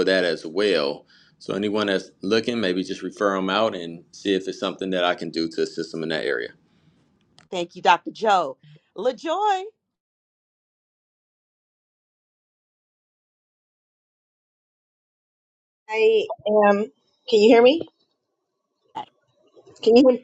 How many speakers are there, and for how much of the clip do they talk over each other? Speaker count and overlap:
3, no overlap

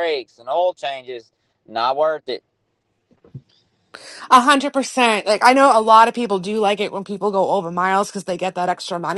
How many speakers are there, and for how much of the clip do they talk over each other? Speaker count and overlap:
2, no overlap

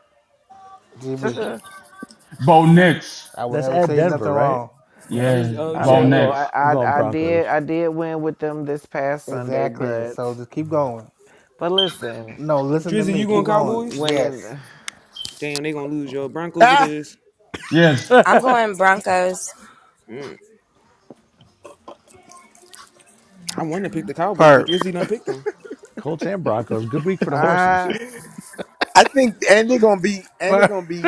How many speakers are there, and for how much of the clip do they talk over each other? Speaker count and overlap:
7, about 23%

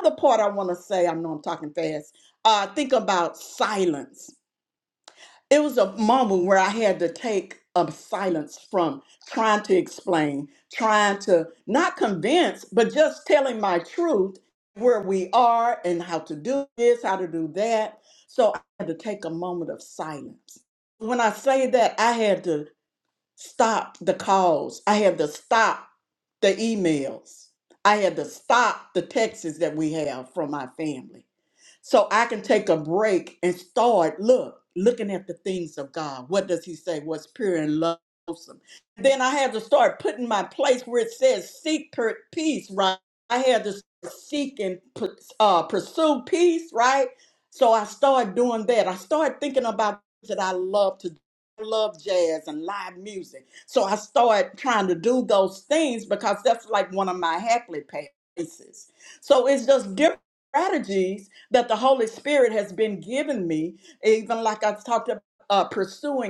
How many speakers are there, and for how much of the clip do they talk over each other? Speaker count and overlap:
1, no overlap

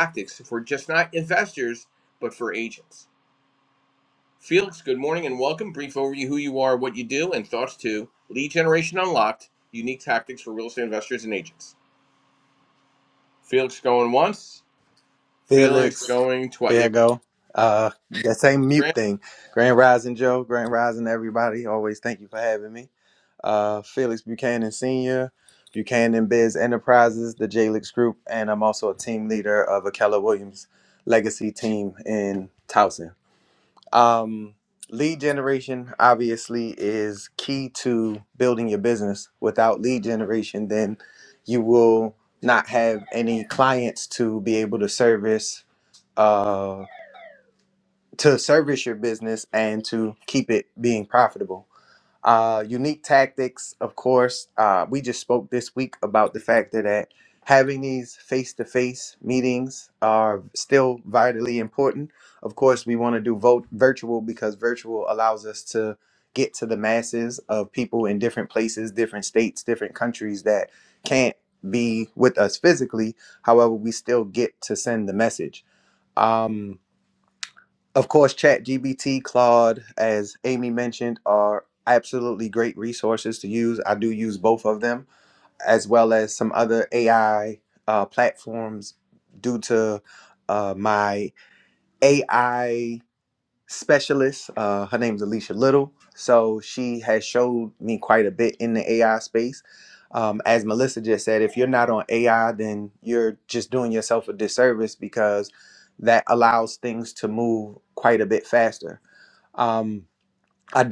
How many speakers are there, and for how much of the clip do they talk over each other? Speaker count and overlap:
2, about 1%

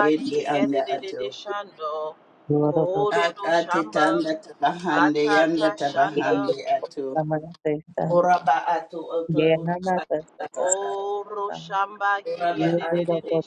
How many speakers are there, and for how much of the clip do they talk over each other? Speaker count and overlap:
3, about 53%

